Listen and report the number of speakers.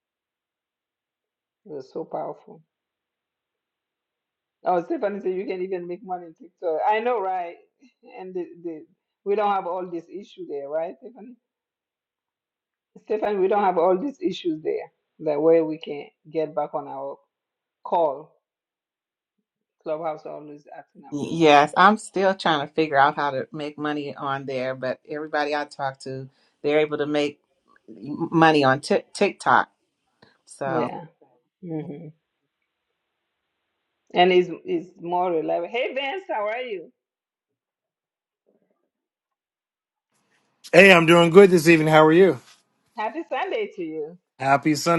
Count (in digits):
3